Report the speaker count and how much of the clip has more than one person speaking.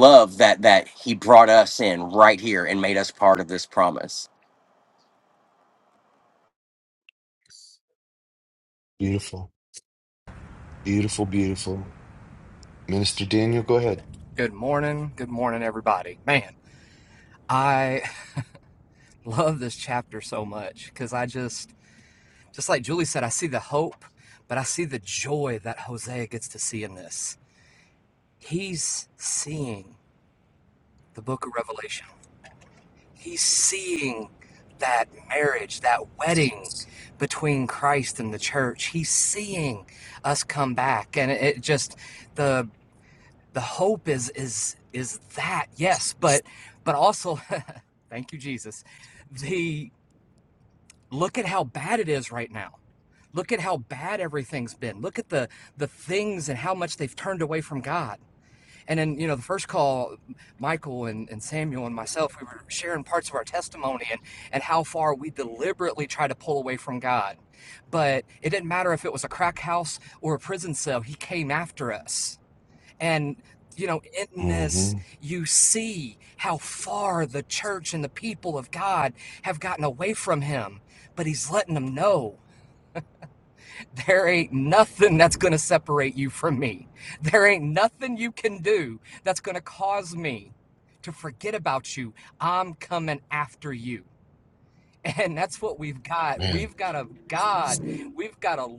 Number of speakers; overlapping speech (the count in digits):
3, about 1%